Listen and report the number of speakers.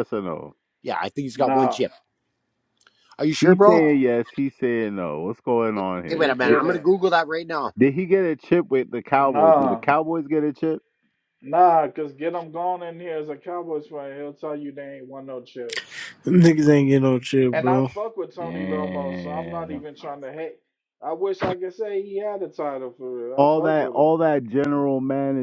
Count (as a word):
four